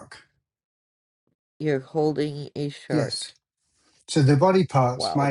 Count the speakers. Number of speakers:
2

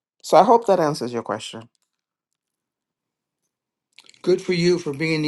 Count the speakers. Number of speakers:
2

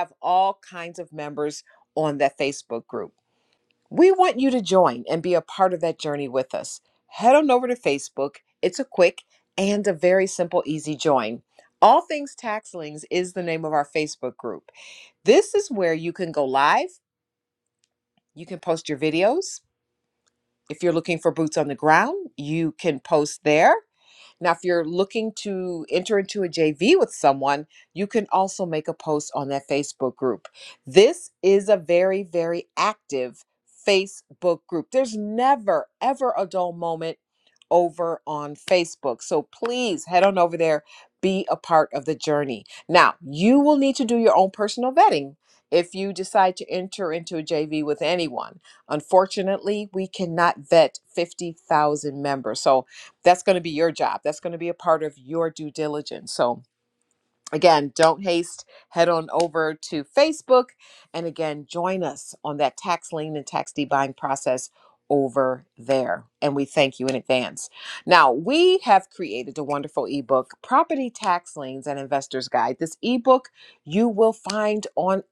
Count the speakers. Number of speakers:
1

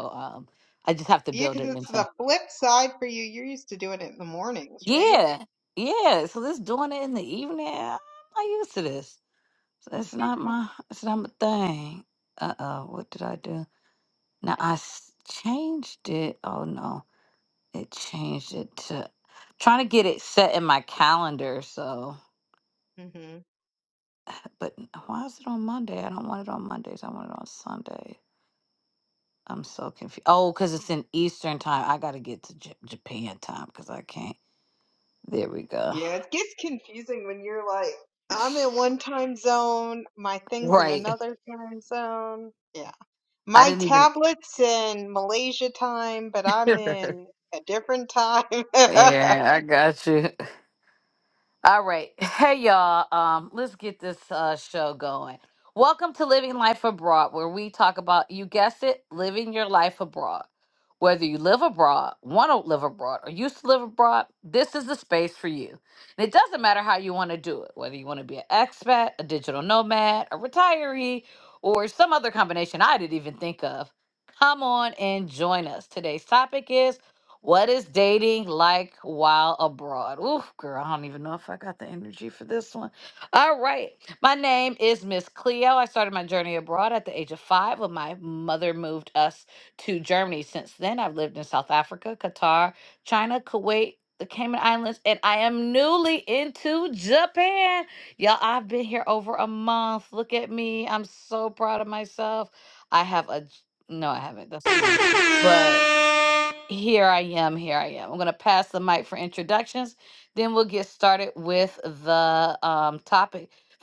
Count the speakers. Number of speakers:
2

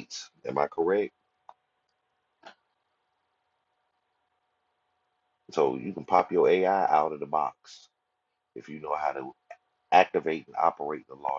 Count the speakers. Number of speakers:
1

